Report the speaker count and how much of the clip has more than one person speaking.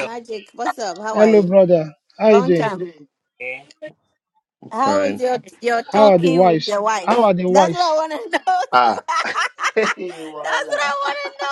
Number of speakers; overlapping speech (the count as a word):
three, about 28%